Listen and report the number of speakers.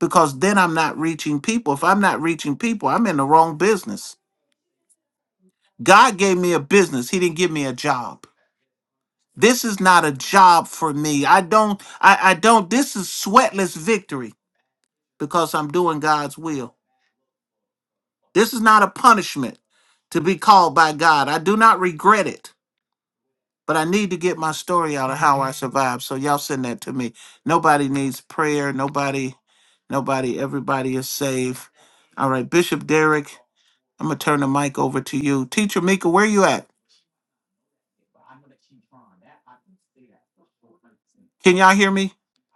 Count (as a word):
one